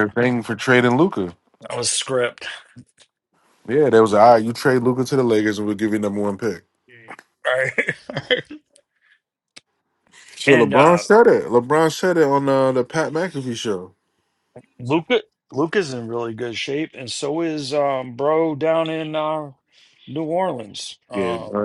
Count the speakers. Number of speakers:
2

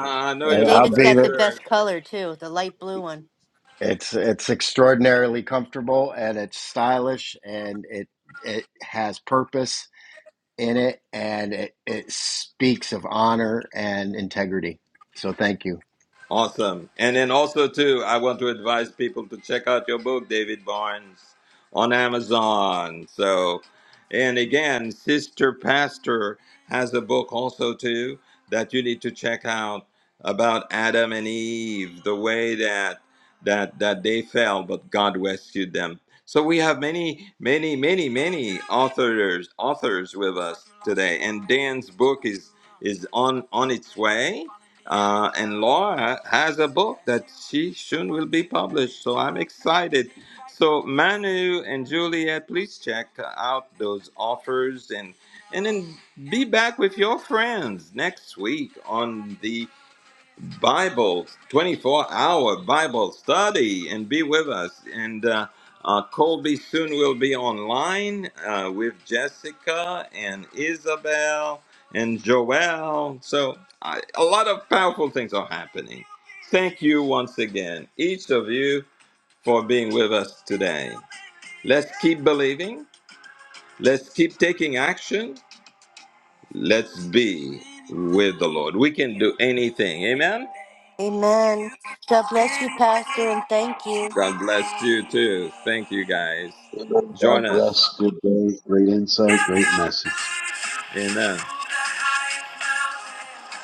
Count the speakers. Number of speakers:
4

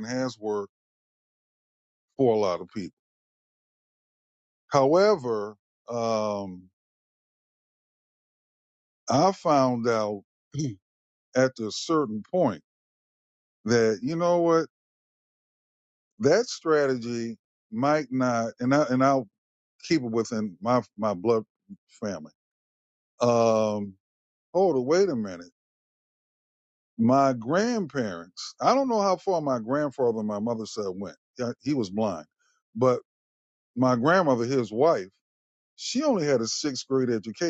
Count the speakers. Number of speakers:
1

